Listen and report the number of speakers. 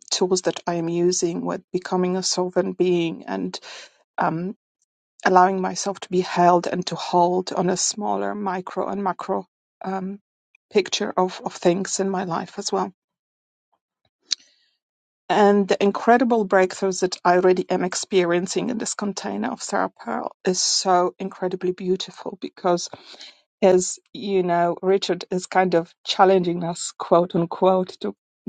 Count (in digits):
1